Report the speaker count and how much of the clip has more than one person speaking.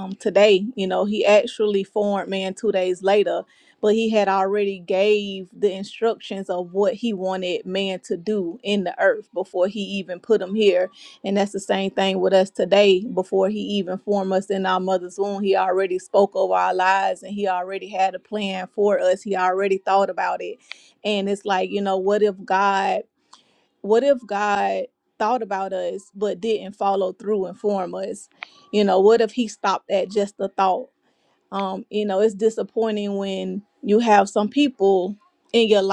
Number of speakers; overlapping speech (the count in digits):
1, no overlap